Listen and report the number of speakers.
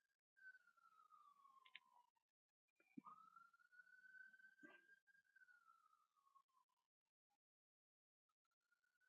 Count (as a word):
zero